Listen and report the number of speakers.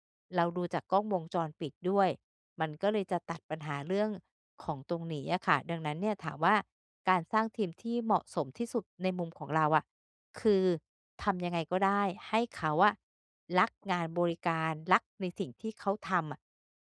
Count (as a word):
one